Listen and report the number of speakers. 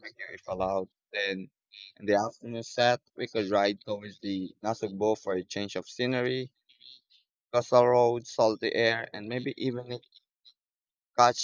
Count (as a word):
one